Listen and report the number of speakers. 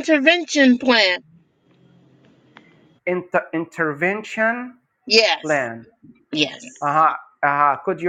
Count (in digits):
2